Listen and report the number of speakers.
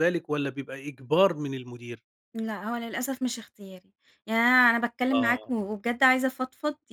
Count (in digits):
2